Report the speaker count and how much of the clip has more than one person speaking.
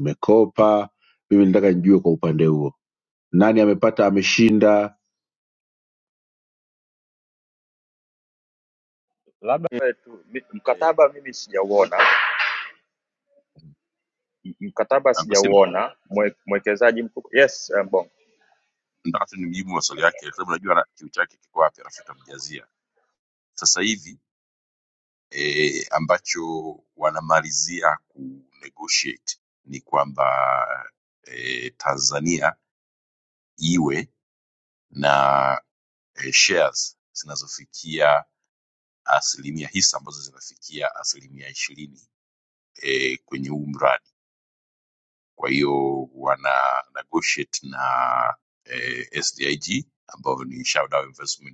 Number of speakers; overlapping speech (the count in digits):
3, about 2%